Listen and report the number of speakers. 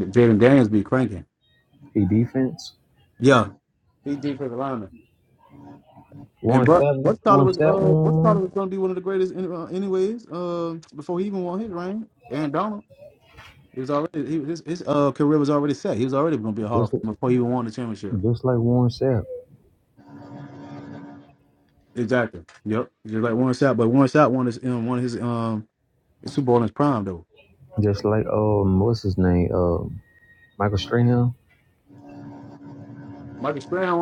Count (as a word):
two